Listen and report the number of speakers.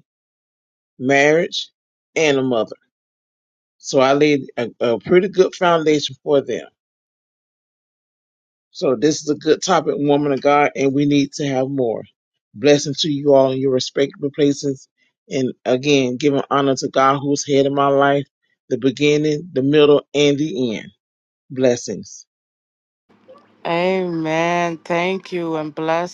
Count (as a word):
two